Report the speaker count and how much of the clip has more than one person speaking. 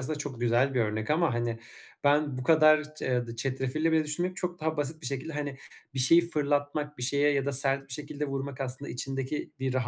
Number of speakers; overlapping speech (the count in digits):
1, no overlap